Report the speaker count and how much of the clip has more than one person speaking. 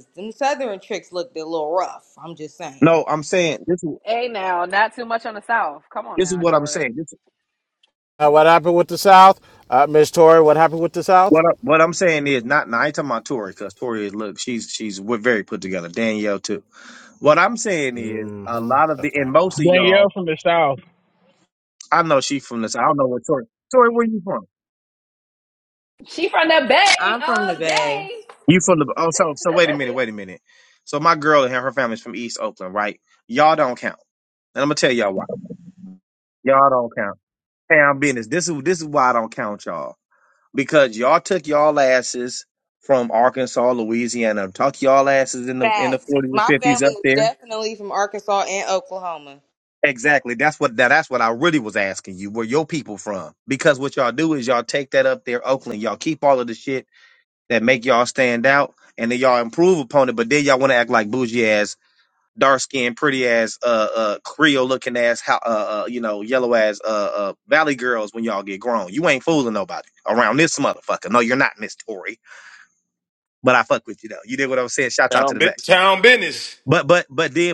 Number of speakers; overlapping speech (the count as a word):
six, about 7%